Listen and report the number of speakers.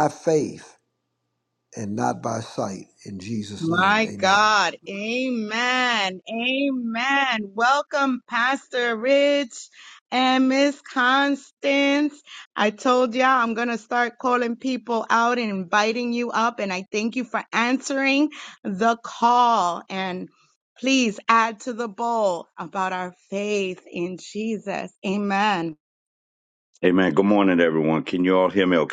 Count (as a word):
three